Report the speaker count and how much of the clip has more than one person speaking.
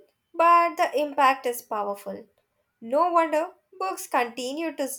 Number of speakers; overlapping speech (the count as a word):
one, no overlap